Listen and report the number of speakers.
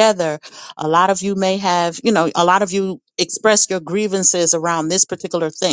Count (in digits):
1